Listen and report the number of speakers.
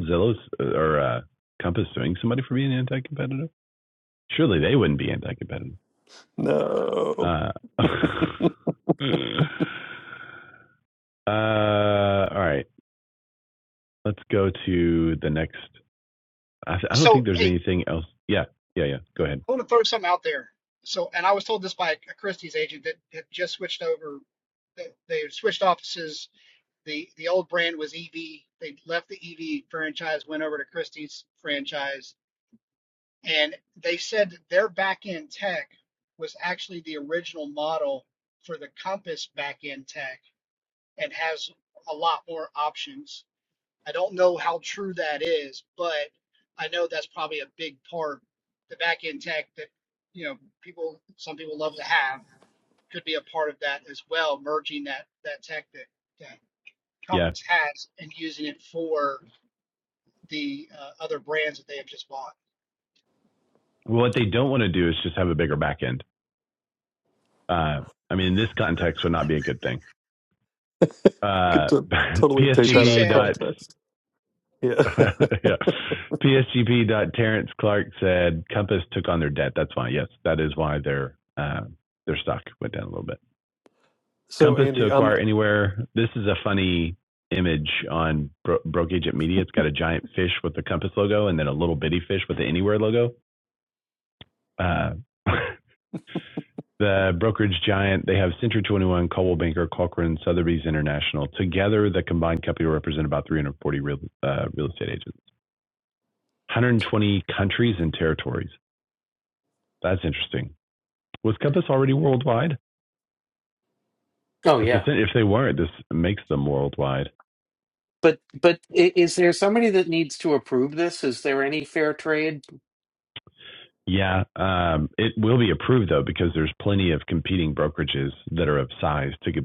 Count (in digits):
4